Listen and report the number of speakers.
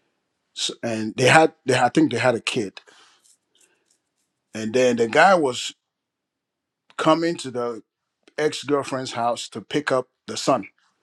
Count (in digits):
1